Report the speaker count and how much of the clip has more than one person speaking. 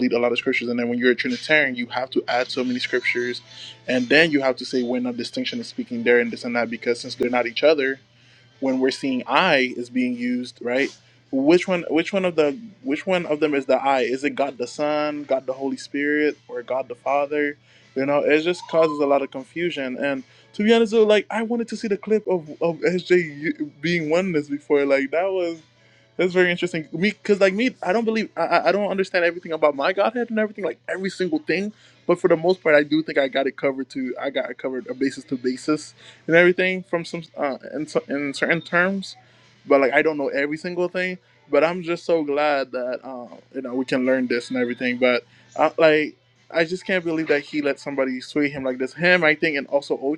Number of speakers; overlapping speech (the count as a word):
one, no overlap